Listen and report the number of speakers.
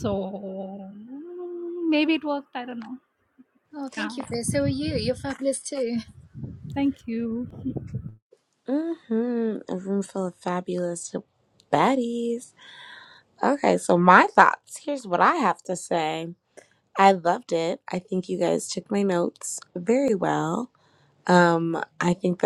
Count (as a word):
three